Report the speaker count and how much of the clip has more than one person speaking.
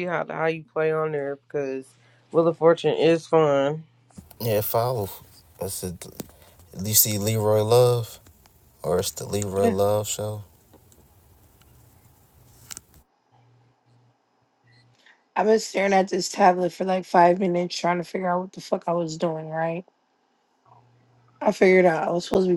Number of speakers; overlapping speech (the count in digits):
3, about 1%